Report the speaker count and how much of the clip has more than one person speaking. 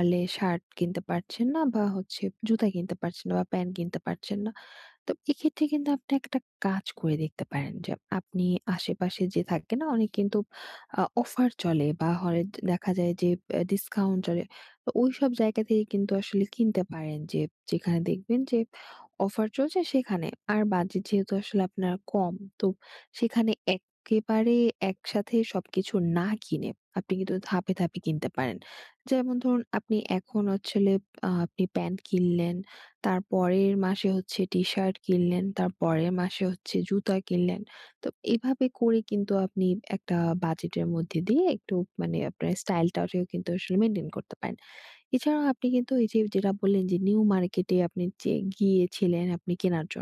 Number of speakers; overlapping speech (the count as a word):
one, no overlap